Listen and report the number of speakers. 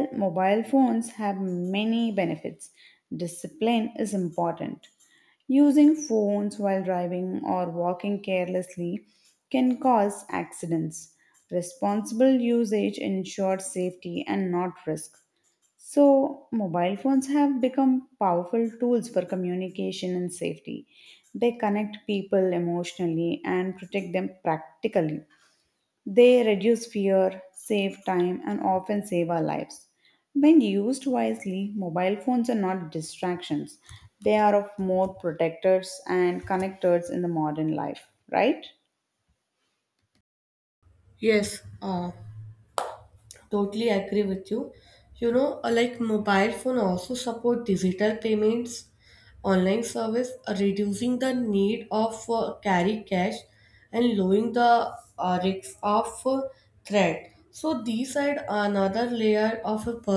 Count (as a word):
two